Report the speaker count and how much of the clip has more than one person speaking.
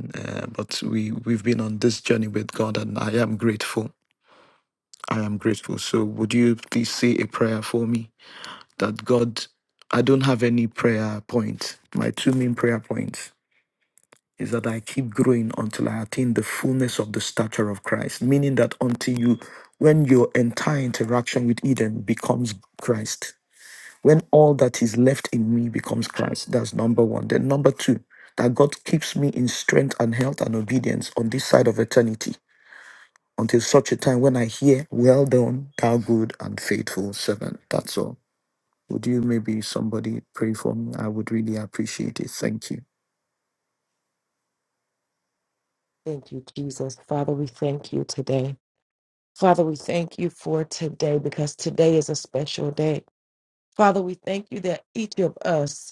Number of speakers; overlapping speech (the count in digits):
2, no overlap